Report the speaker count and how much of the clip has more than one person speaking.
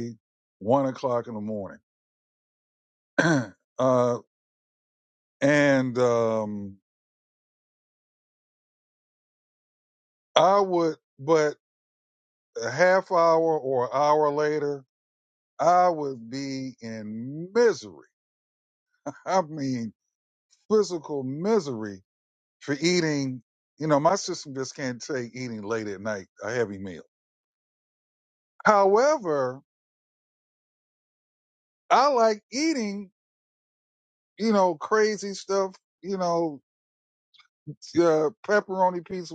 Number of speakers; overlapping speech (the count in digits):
1, no overlap